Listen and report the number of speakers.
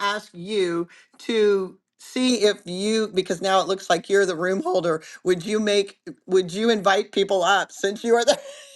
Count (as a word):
one